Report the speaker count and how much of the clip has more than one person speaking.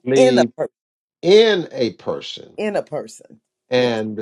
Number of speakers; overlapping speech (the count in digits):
2, about 14%